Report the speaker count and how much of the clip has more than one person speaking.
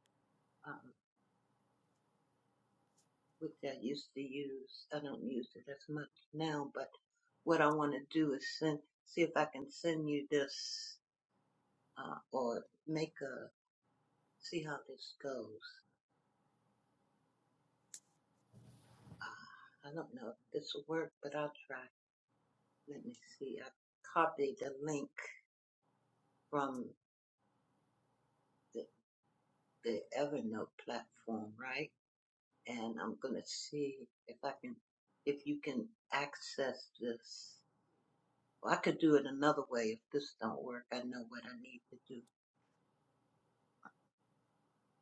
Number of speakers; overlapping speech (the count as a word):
one, no overlap